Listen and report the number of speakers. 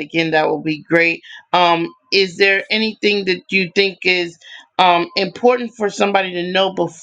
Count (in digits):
1